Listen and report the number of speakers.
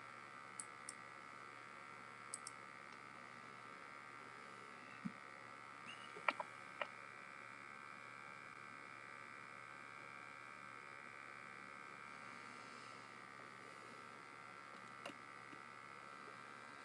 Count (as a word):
zero